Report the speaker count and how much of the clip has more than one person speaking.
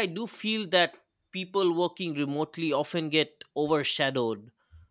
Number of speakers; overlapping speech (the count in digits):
1, no overlap